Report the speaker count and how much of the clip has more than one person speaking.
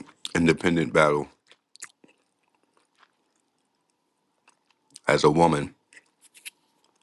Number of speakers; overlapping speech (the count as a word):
one, no overlap